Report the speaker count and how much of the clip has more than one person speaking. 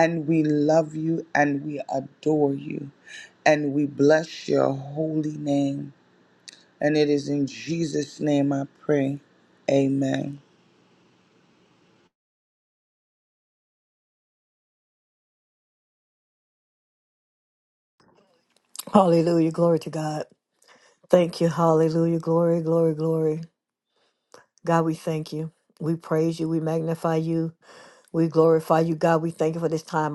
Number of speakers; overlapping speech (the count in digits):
2, no overlap